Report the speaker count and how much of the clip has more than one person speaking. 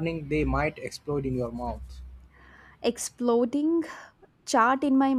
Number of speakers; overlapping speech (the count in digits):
2, no overlap